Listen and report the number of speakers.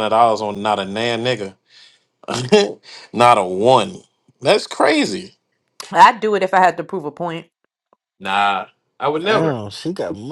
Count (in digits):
3